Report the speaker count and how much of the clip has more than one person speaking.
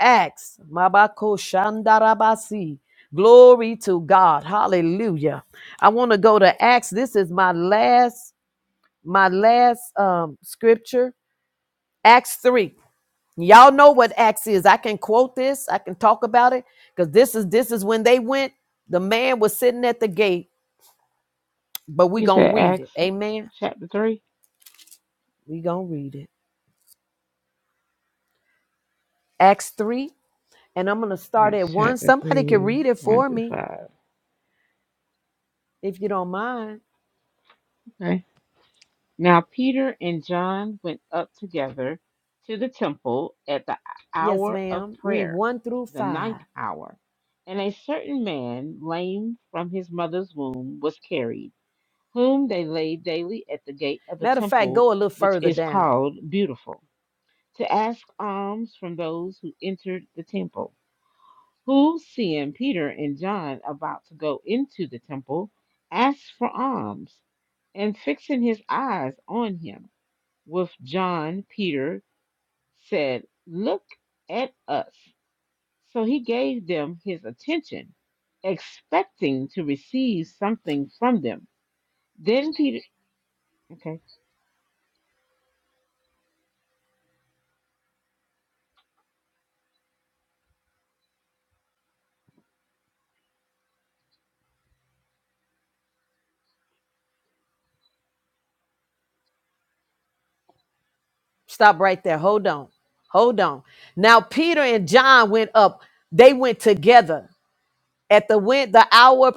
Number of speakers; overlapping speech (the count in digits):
2, about 5%